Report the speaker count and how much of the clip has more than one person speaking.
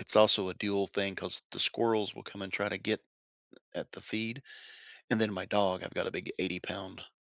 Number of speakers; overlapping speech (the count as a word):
one, no overlap